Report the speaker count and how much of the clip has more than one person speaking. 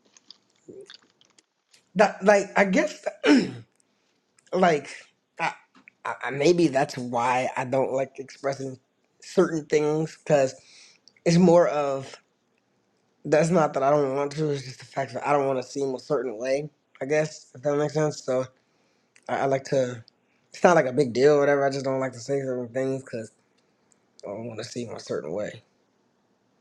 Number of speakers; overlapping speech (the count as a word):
one, no overlap